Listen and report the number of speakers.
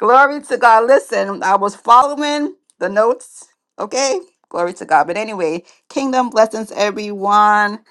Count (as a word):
one